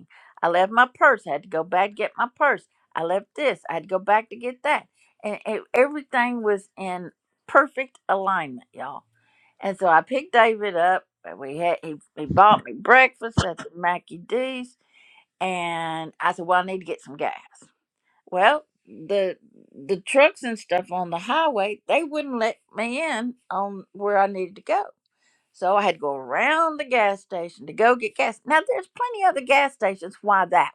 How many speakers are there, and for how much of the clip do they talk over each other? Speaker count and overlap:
1, no overlap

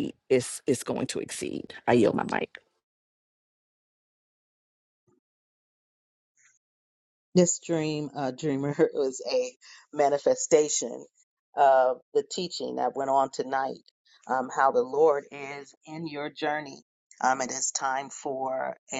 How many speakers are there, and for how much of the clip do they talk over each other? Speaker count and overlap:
2, no overlap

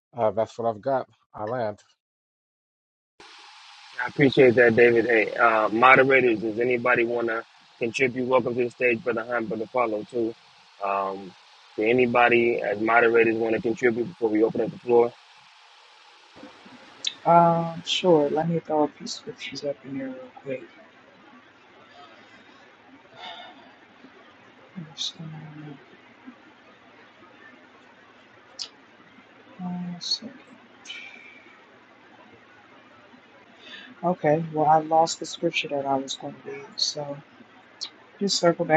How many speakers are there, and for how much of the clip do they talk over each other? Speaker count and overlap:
3, no overlap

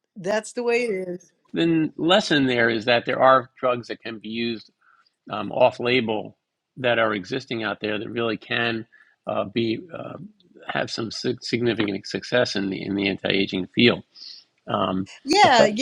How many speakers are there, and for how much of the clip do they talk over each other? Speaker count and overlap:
2, about 2%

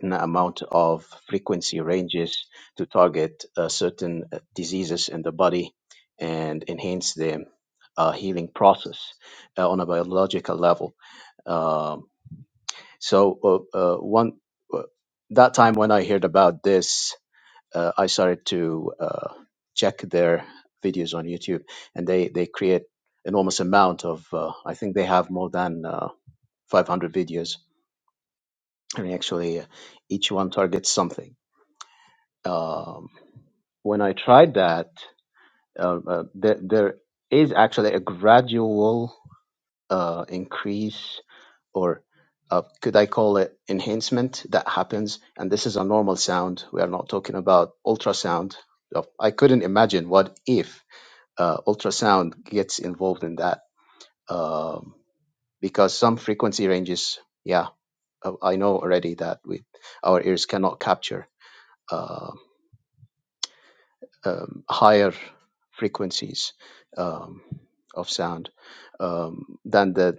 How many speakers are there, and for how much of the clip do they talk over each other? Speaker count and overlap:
1, no overlap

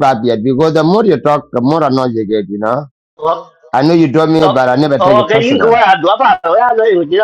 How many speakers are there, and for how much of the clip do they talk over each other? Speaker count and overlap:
2, about 12%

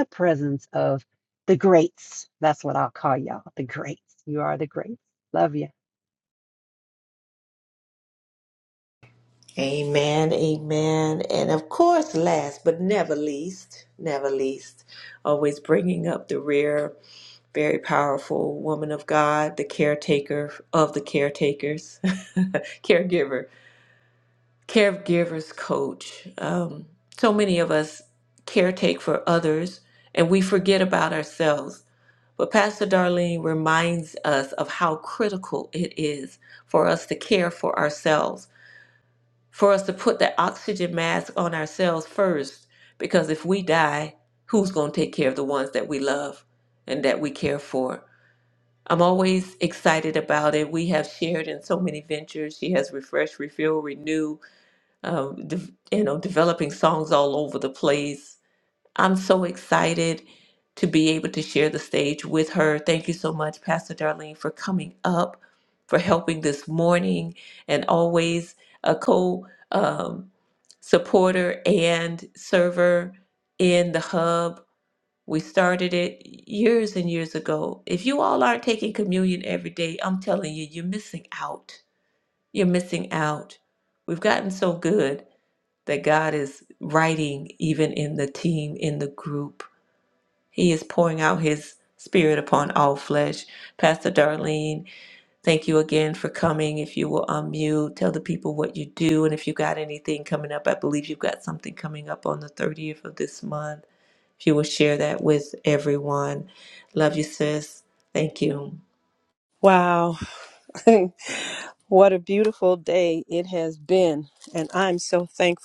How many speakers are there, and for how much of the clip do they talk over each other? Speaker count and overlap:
3, no overlap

